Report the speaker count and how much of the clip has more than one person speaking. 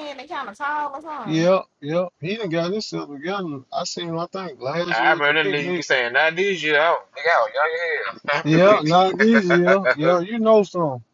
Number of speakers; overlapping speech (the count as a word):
three, about 23%